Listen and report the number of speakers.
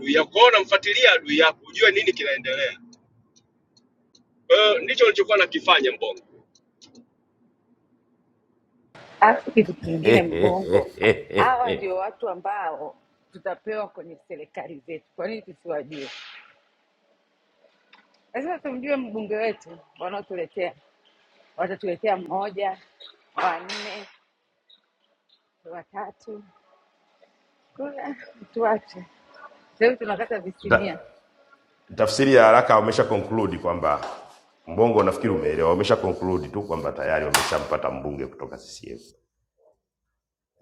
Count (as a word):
three